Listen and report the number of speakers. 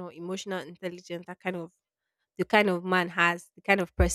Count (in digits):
1